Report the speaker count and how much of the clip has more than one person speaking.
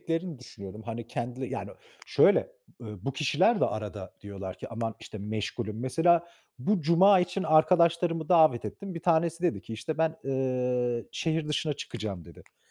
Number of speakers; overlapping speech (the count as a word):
one, no overlap